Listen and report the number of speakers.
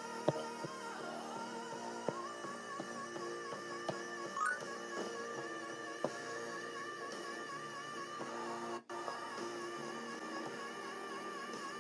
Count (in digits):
0